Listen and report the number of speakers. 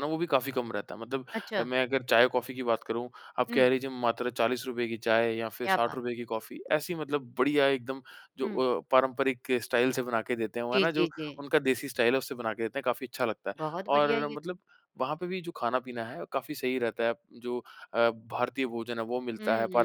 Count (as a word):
two